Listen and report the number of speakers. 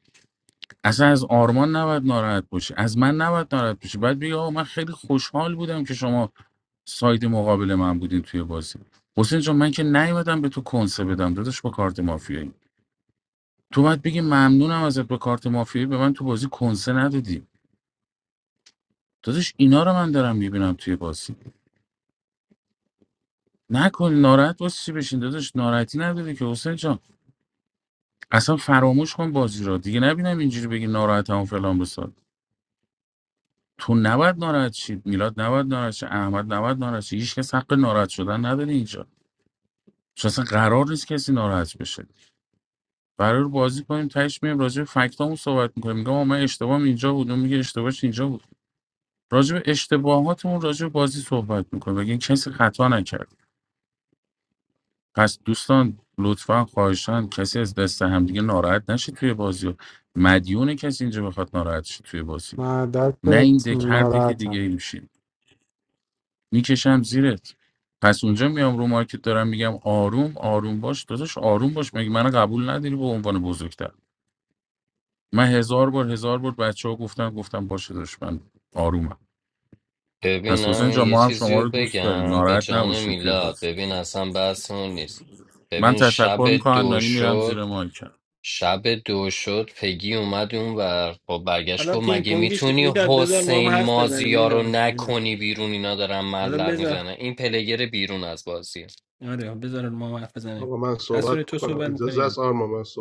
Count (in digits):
5